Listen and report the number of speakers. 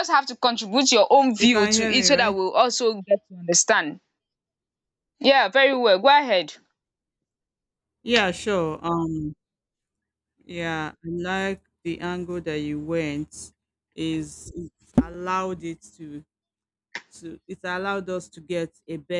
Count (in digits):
2